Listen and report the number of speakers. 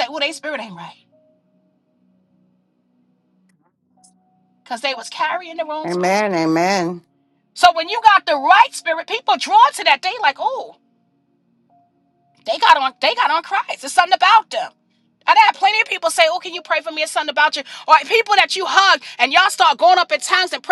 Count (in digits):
2